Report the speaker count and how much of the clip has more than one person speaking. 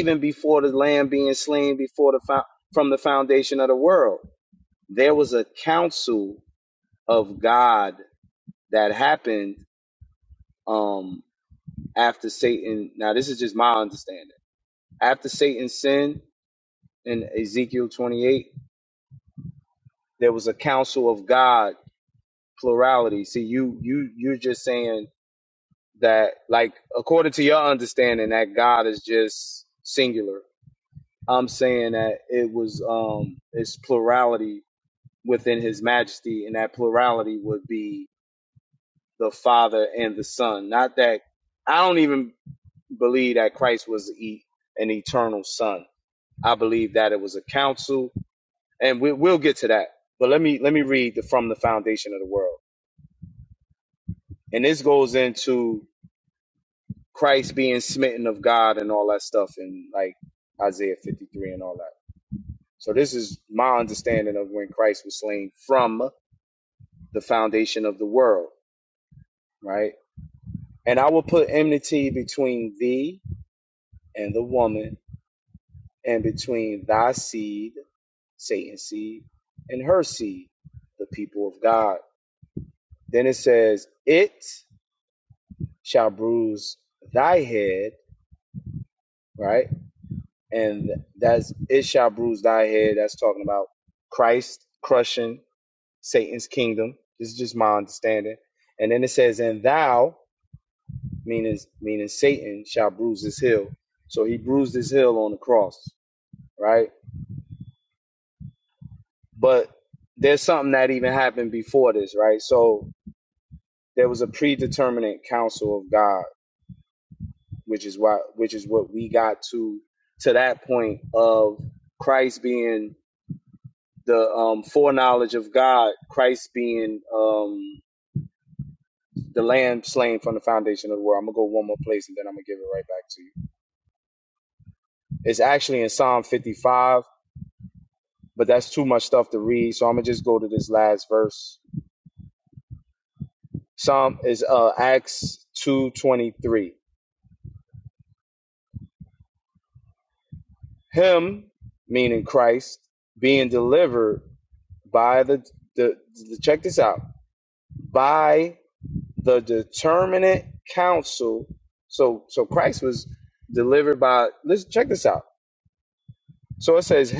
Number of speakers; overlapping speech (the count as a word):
one, no overlap